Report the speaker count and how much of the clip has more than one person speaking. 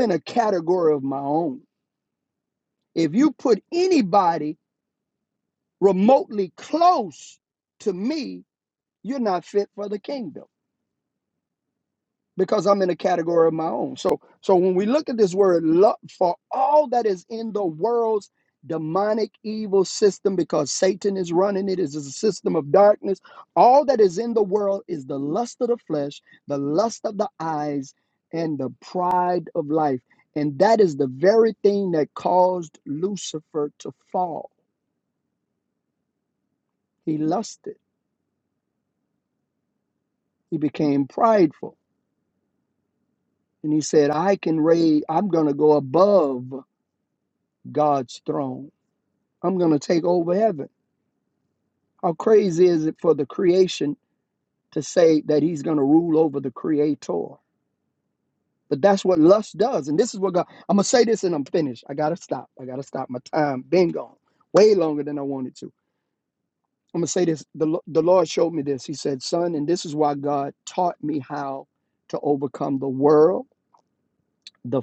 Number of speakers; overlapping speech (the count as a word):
one, no overlap